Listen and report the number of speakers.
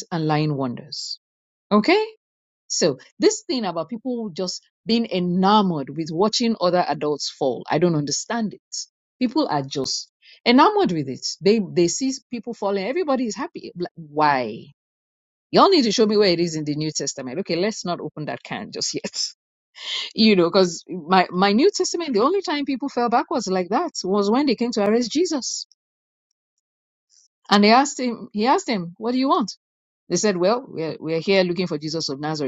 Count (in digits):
1